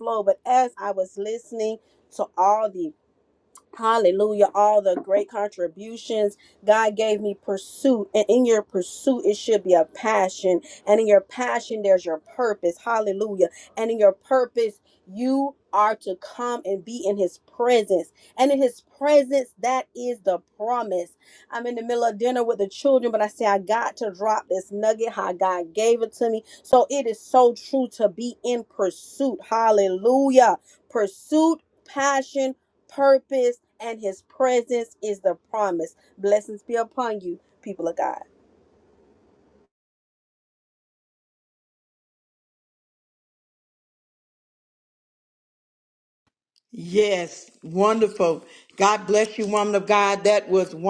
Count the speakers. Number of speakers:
two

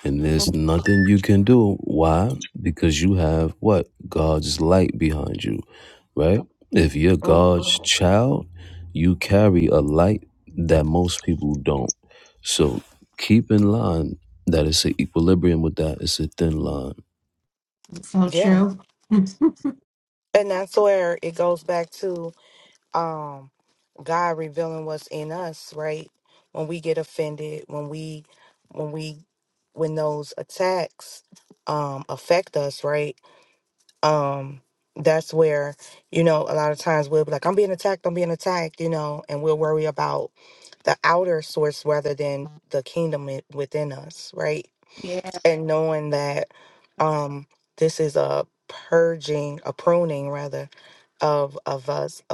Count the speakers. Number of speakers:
three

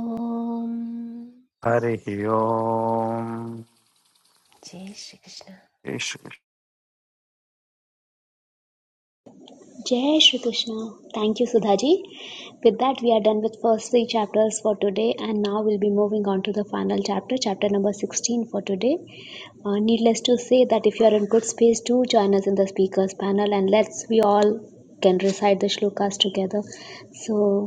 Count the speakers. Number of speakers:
three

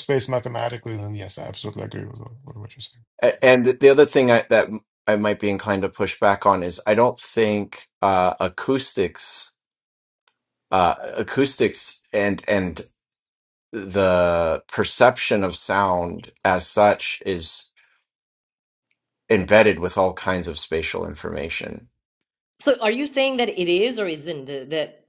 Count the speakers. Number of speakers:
three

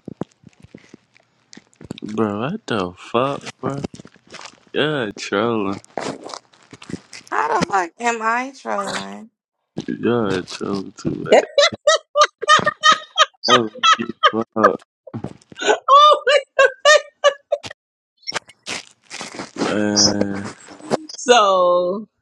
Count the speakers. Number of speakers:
three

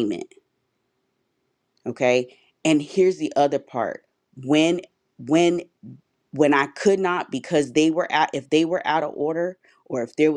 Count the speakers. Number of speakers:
one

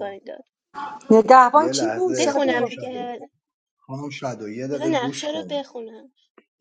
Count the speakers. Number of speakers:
three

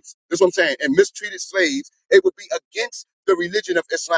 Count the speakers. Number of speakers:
one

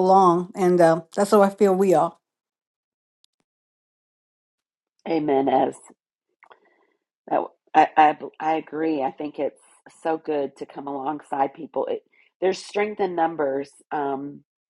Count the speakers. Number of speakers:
two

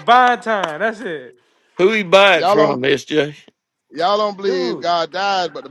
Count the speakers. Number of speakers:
three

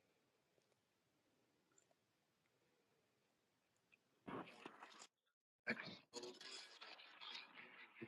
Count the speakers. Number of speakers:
zero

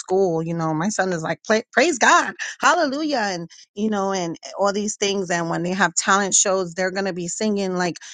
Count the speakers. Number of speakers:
one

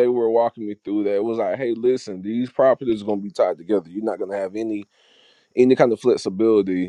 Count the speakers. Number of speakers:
one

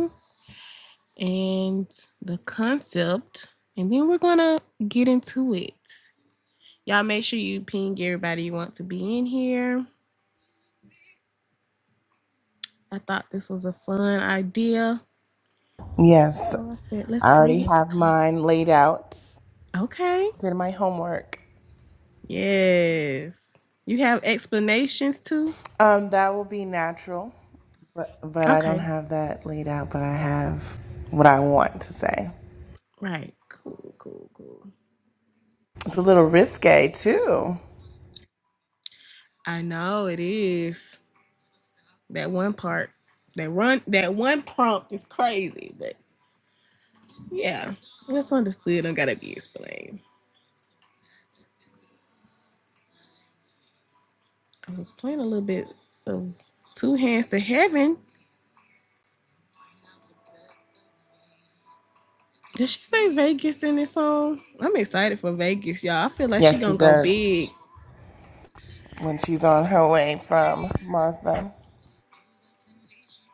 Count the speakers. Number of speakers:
two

